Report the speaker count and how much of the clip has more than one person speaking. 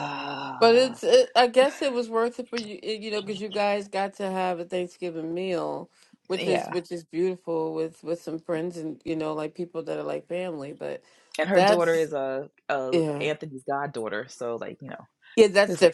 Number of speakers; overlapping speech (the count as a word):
two, about 11%